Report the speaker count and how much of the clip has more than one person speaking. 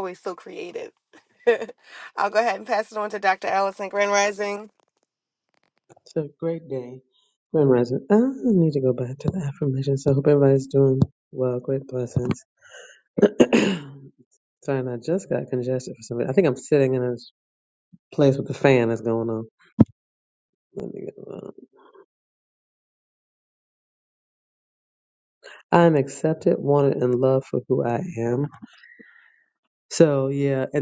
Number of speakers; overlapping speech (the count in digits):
2, no overlap